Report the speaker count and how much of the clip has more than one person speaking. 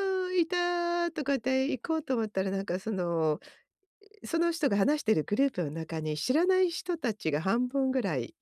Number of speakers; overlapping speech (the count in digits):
1, no overlap